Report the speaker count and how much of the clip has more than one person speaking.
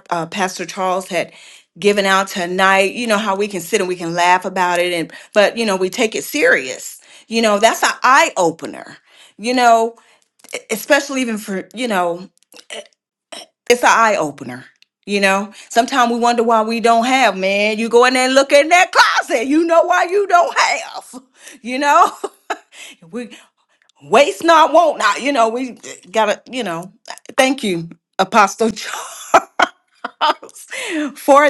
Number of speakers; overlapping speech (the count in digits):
1, no overlap